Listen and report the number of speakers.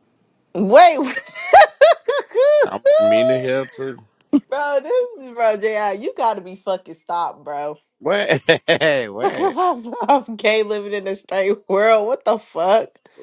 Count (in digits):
2